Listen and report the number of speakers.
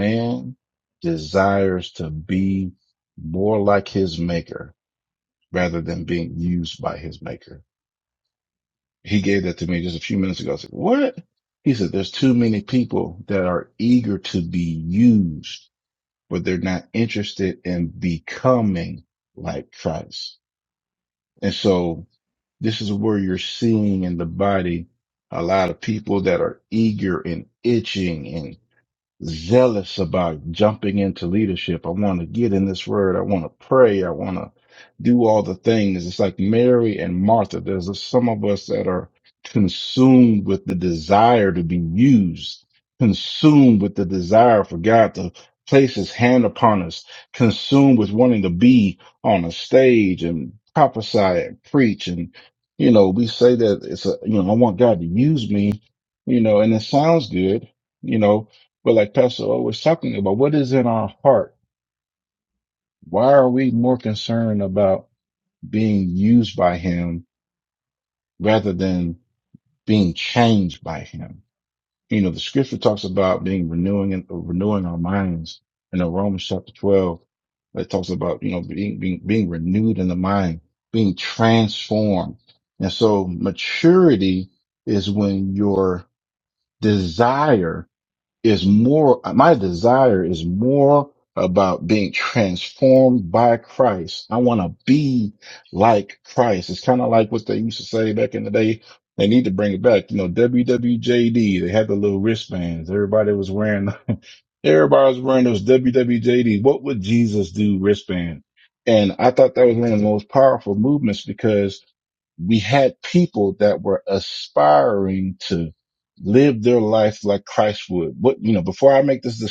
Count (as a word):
one